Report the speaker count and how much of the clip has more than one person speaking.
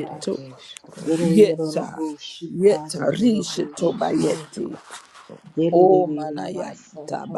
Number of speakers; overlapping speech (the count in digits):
3, about 50%